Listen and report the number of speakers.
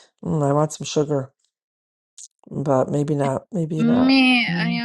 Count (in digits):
2